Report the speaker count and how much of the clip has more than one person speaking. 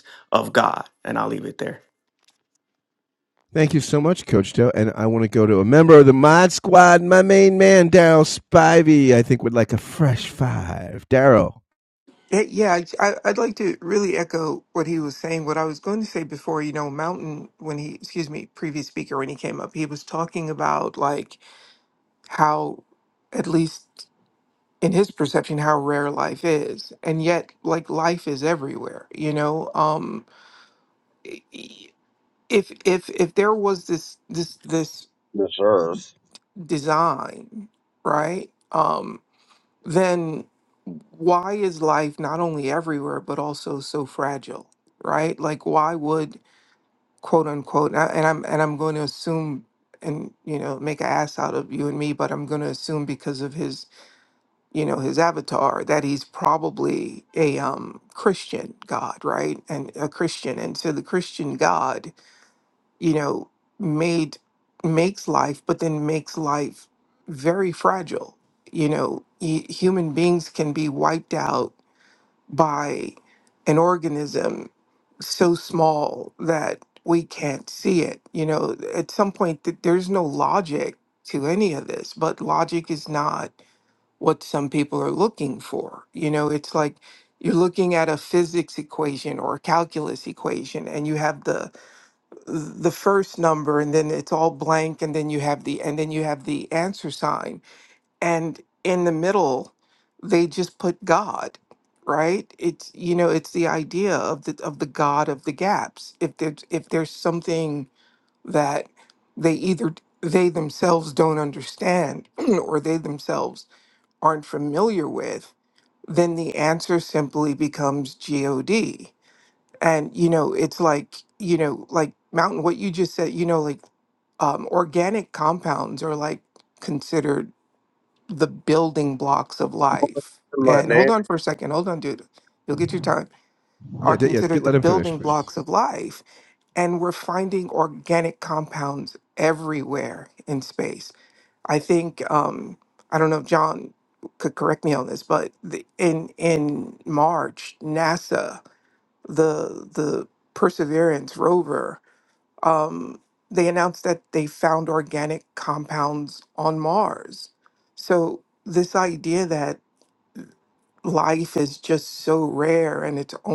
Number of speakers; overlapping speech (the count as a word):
four, about 1%